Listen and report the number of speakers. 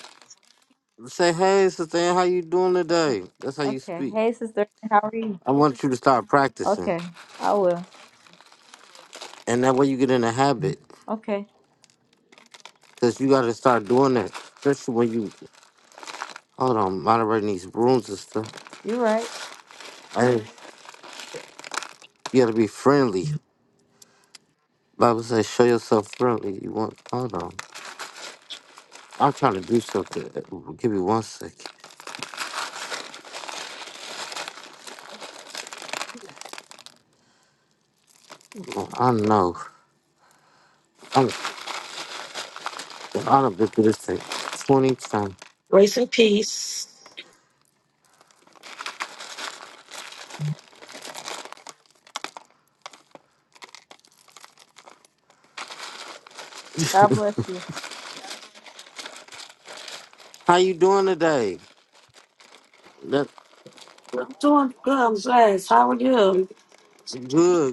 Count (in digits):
3